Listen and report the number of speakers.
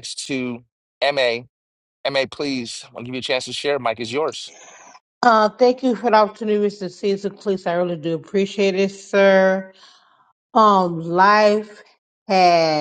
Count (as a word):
two